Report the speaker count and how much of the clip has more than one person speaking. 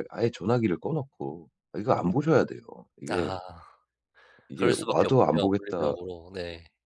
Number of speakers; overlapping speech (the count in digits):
2, about 24%